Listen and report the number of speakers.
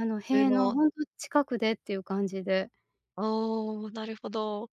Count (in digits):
2